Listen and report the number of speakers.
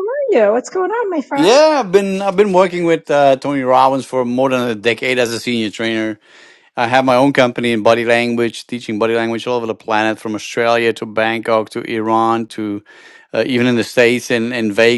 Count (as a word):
two